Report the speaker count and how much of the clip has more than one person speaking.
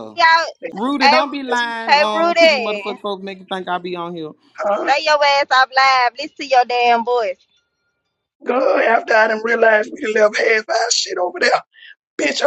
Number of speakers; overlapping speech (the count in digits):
3, about 13%